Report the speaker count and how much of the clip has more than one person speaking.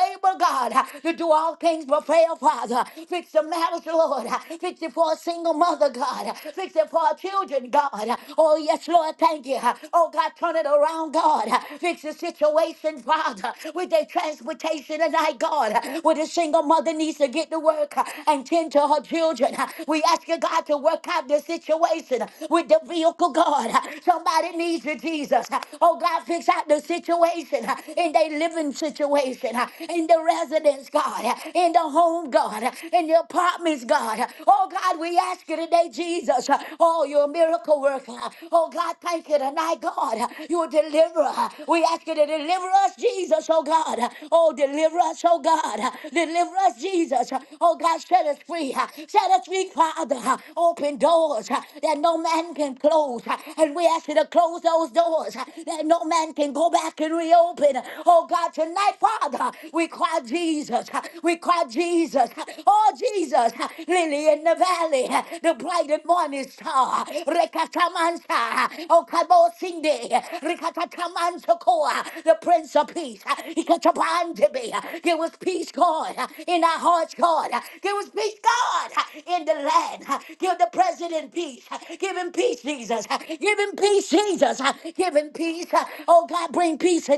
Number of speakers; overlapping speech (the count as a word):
one, no overlap